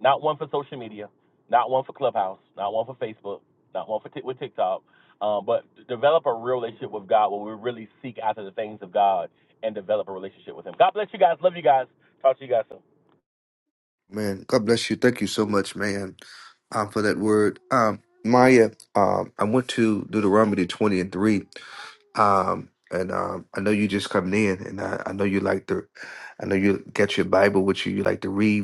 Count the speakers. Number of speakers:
2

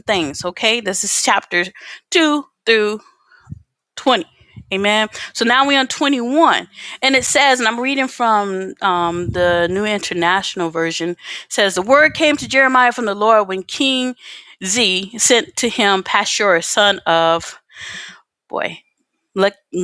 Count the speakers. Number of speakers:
1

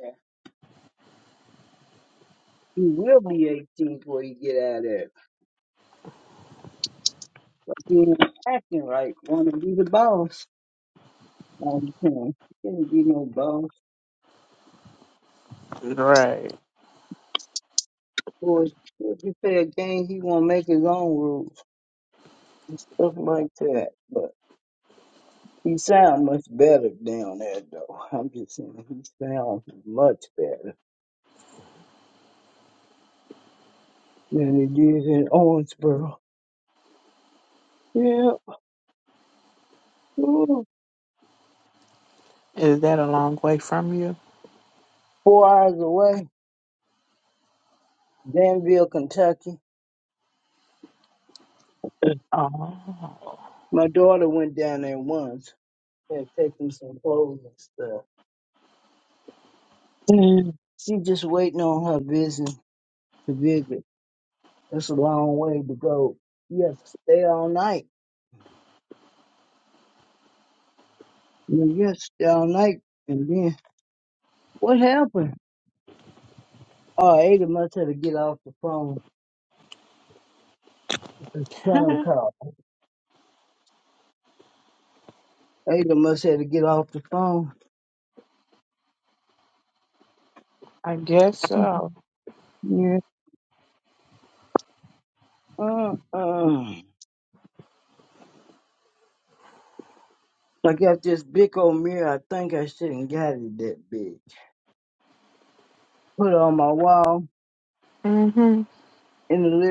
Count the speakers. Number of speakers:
2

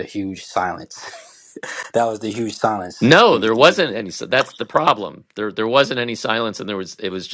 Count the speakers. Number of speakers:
2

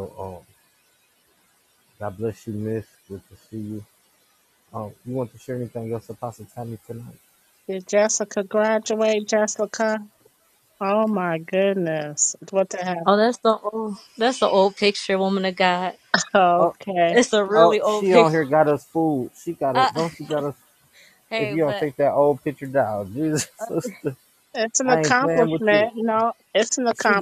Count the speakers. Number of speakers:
3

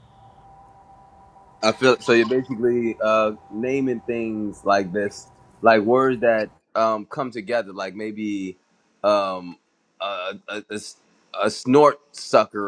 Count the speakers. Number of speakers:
1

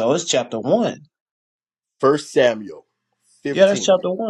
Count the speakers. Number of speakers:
2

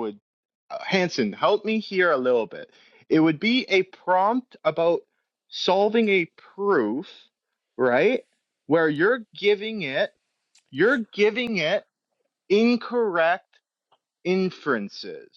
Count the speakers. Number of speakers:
1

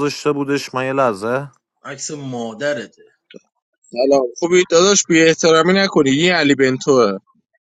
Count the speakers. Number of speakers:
3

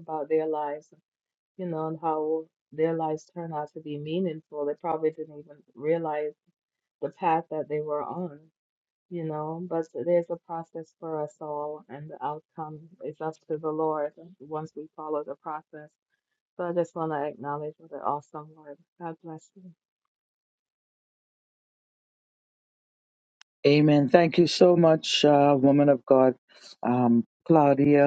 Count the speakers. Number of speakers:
2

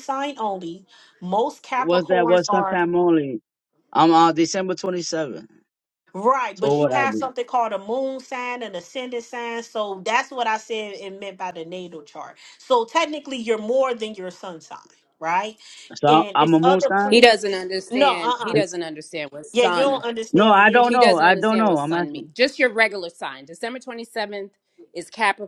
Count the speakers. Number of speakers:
3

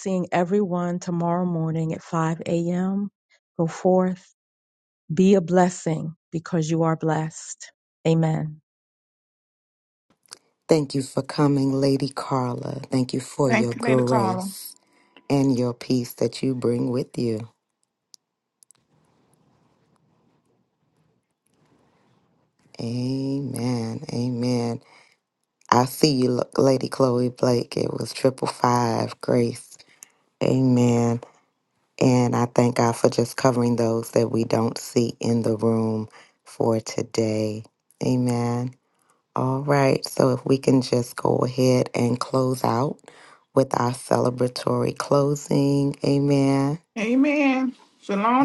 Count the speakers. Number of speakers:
3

